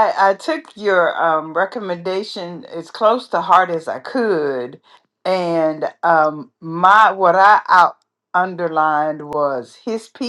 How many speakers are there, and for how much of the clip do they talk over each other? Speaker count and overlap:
one, no overlap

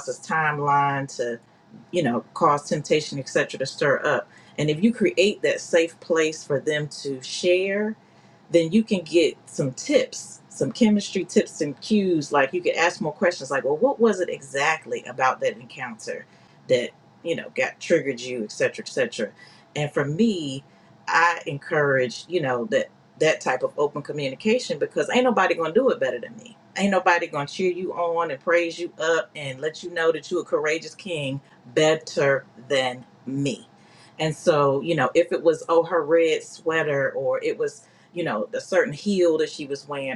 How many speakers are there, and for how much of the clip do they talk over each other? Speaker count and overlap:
one, no overlap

